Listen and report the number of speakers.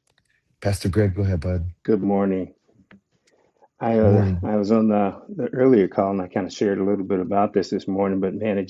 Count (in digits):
2